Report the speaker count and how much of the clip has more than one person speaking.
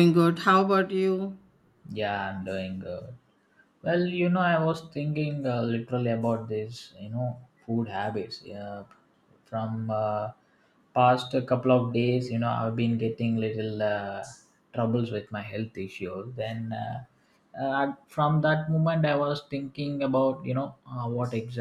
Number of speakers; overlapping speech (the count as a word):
two, no overlap